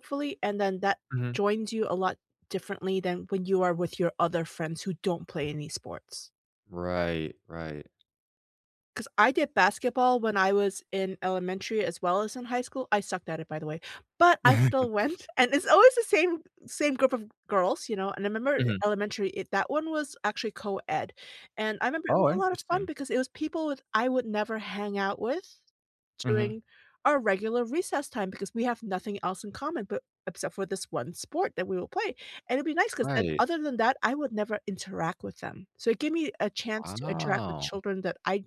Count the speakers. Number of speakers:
two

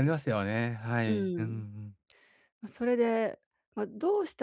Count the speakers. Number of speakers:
two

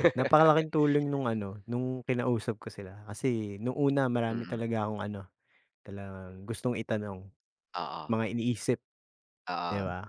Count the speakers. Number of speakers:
two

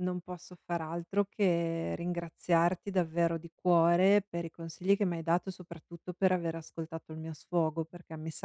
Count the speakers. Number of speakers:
one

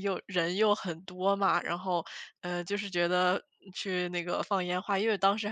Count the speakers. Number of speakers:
one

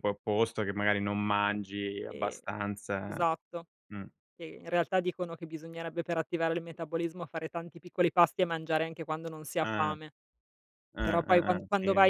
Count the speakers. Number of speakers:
two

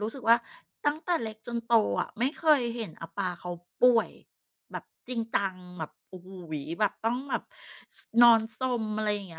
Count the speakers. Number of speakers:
one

